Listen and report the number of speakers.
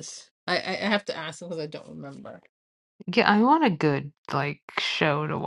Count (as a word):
two